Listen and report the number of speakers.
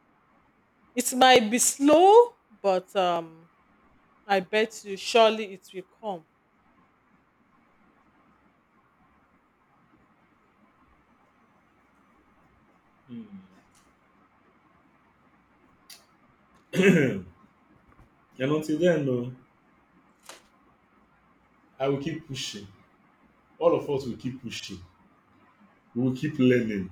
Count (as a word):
two